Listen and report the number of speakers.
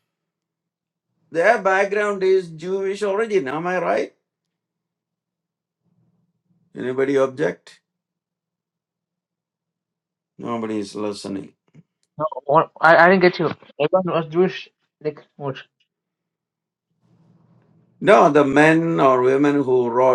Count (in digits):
2